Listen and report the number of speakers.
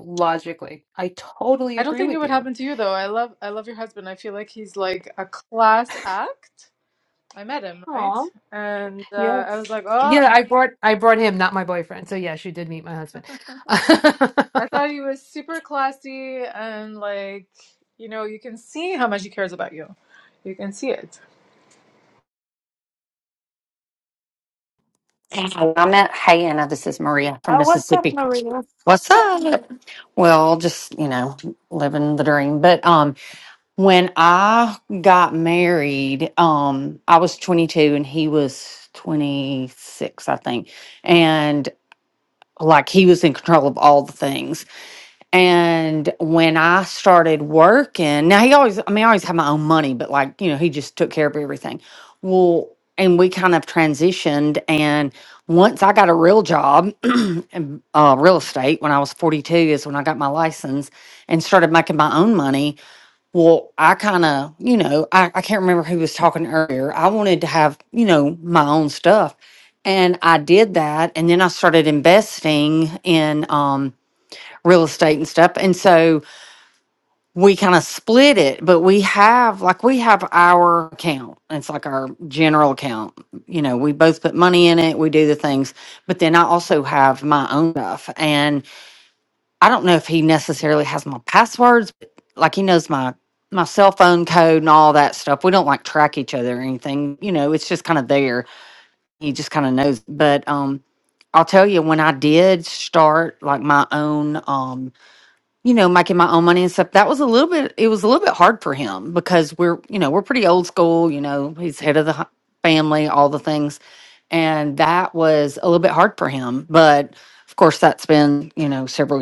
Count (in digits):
3